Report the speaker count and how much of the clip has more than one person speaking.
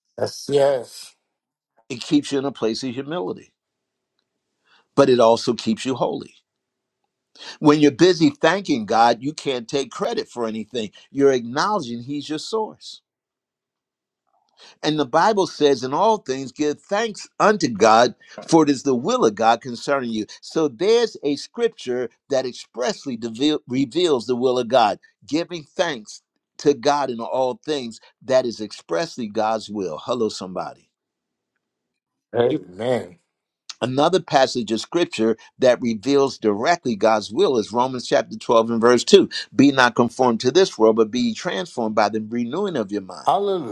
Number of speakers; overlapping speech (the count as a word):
two, no overlap